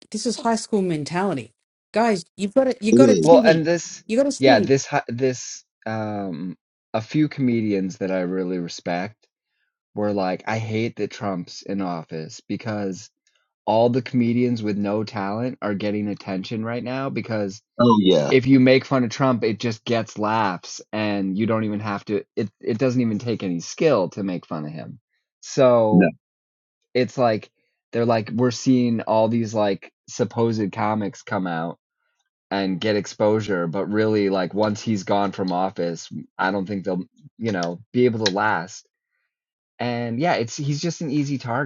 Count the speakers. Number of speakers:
three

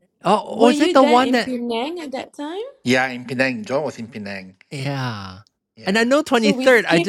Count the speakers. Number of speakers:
three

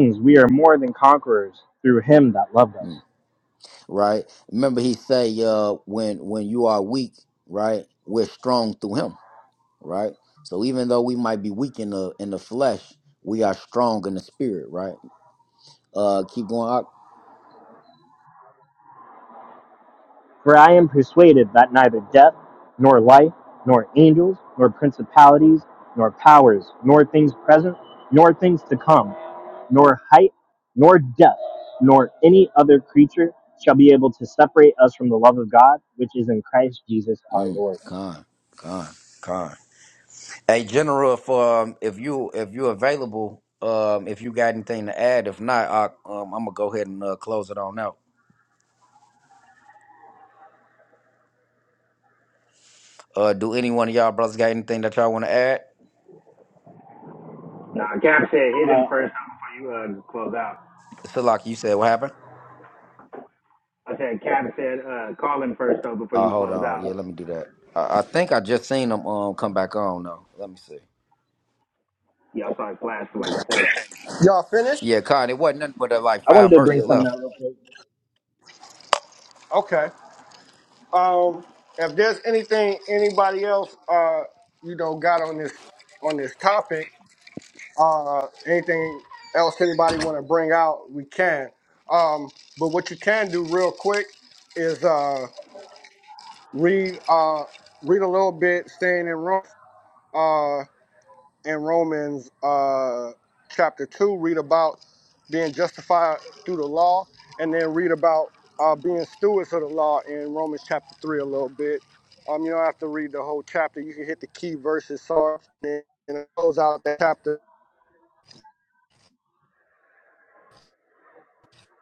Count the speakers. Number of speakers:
four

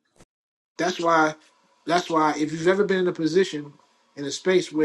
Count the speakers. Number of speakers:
one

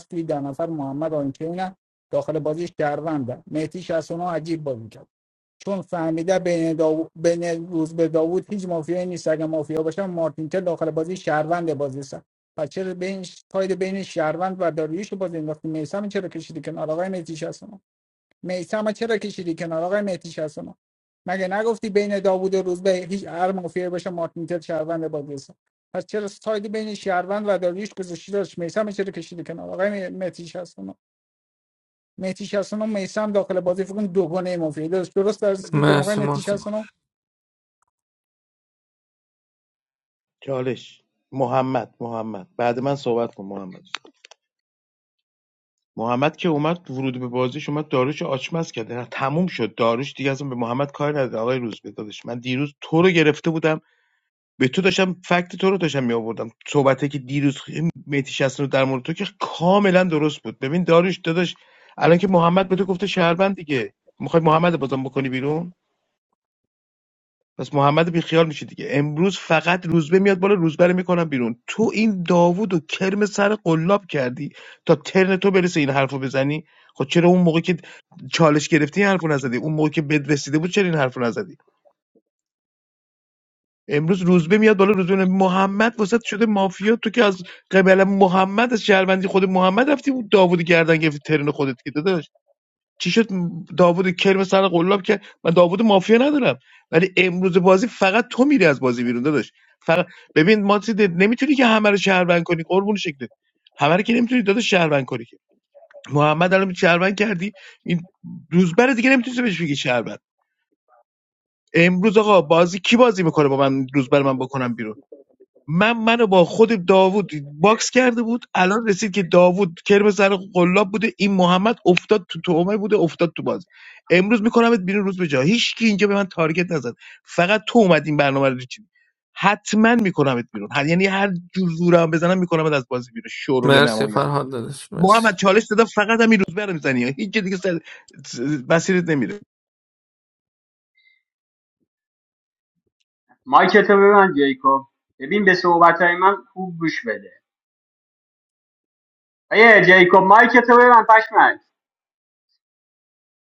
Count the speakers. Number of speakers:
four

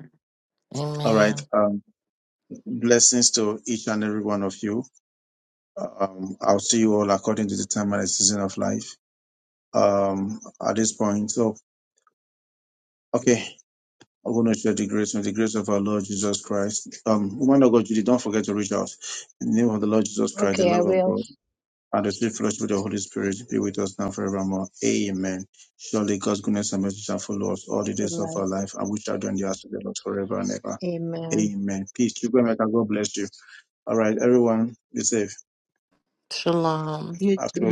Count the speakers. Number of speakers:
three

